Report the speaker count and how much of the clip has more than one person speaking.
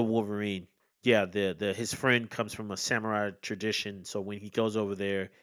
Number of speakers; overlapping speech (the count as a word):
one, no overlap